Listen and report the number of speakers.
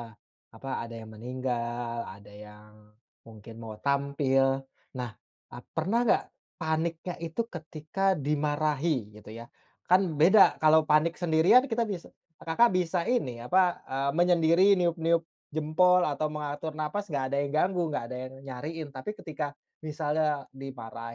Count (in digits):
1